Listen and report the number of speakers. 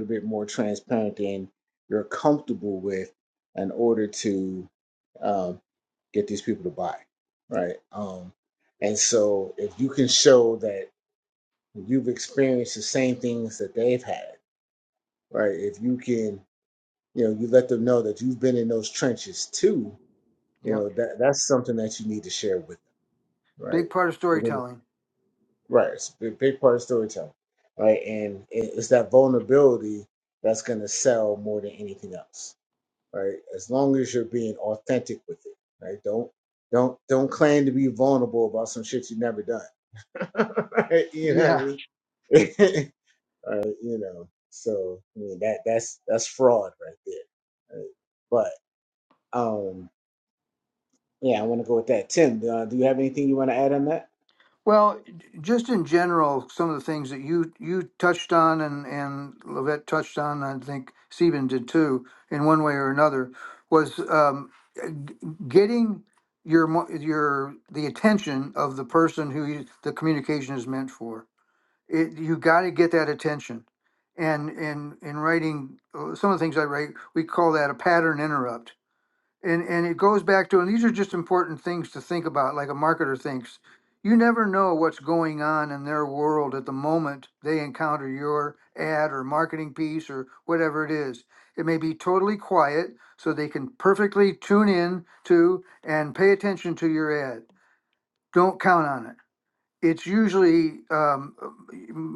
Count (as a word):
two